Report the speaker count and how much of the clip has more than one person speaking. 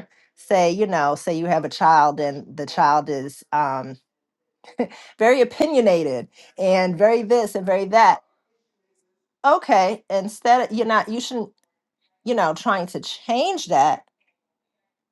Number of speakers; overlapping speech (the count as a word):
one, no overlap